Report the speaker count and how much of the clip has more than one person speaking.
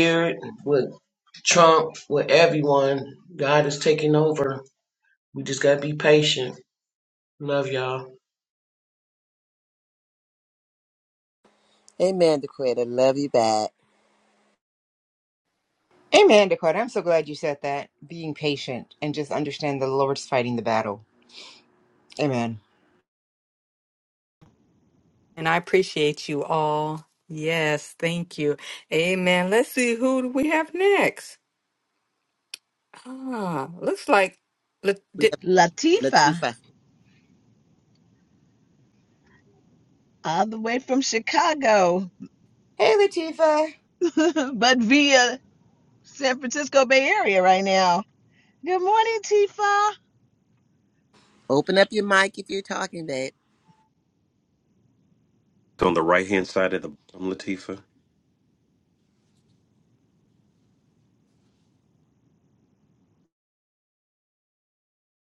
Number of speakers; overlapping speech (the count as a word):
six, about 1%